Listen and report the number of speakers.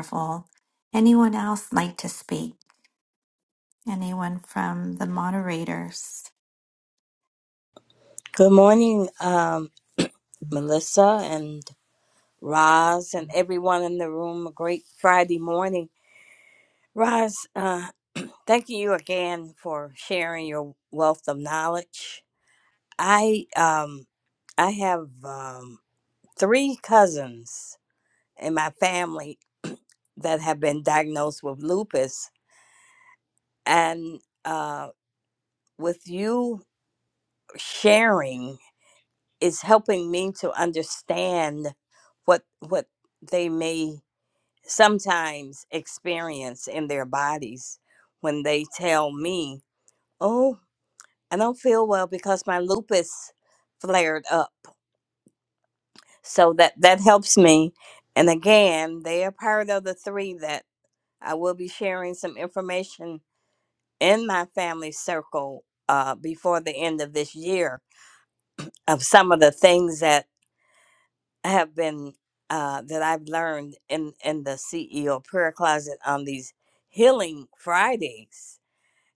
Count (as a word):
two